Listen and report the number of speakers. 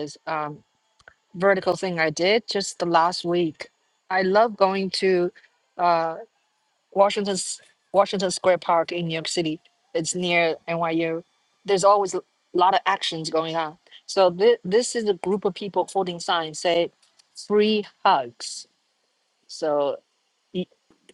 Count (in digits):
1